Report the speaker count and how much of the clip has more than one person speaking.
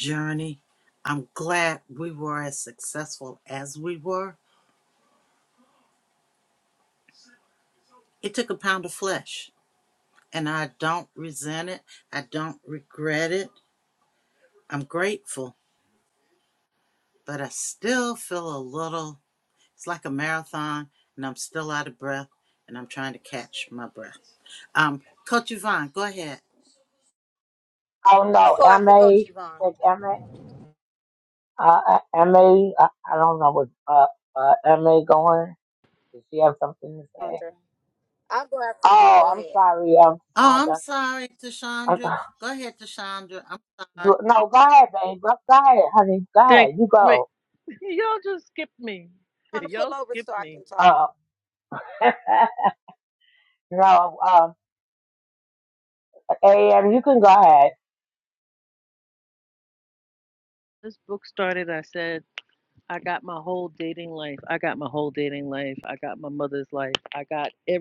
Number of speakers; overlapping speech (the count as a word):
four, about 6%